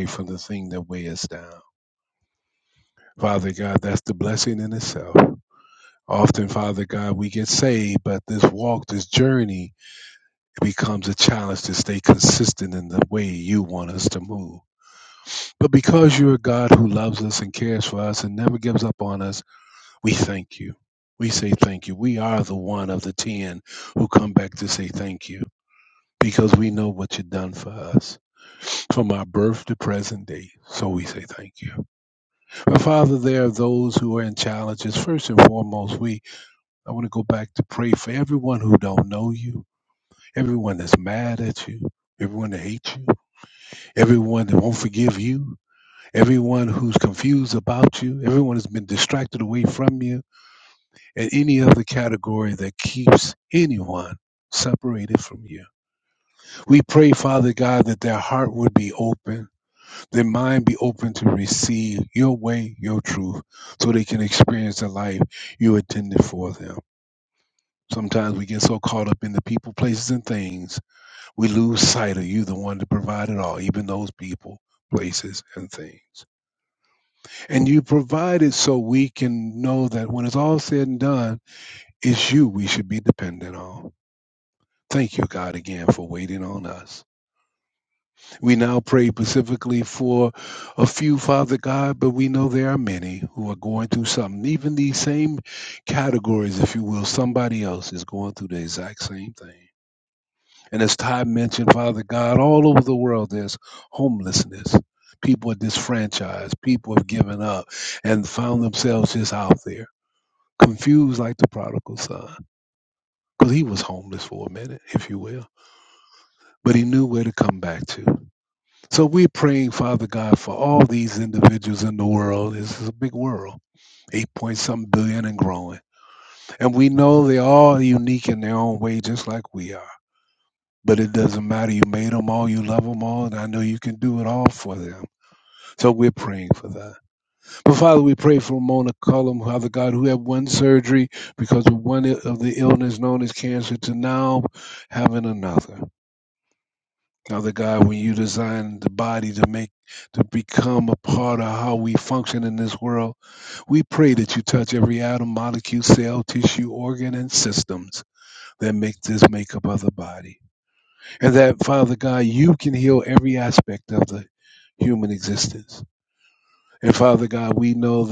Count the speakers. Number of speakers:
one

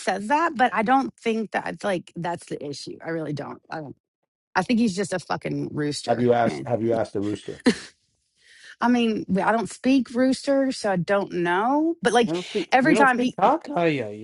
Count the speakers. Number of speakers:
three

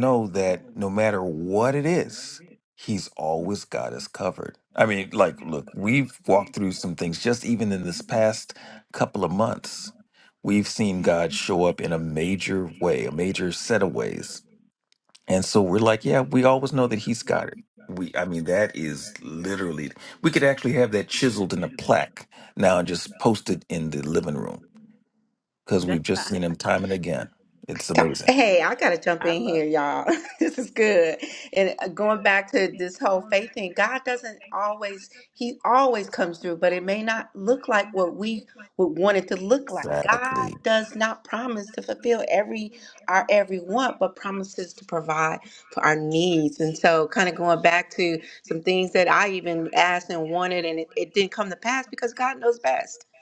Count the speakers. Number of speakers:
two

